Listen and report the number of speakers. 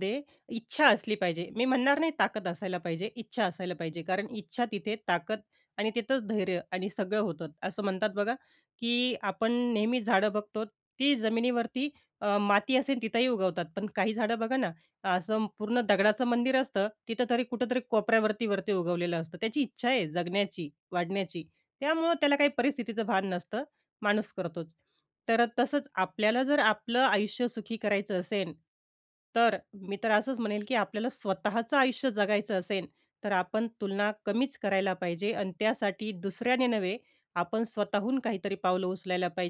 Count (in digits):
1